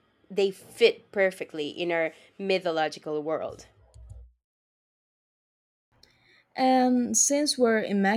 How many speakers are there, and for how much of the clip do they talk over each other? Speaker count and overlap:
two, no overlap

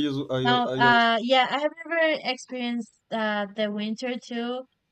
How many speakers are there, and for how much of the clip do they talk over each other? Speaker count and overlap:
two, about 12%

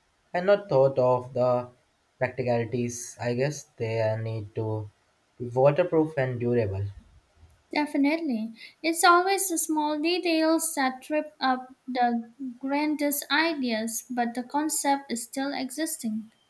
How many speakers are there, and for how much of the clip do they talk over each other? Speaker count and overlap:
two, no overlap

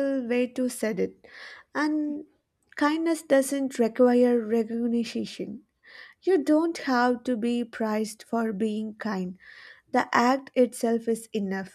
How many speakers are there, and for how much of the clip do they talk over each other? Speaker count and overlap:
one, no overlap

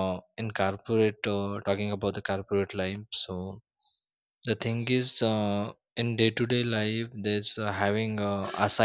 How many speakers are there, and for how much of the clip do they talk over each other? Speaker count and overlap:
one, no overlap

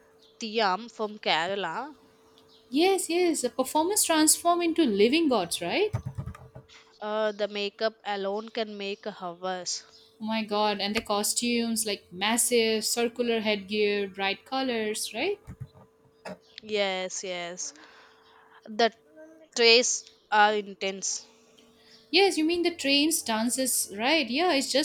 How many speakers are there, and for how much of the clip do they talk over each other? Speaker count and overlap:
two, no overlap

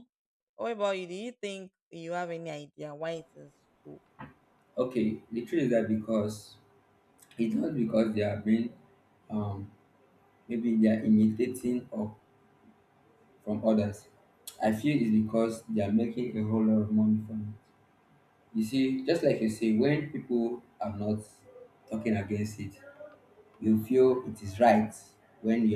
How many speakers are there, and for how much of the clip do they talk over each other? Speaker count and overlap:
two, no overlap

